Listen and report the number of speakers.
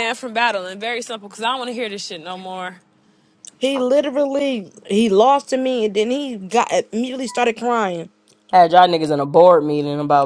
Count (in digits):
3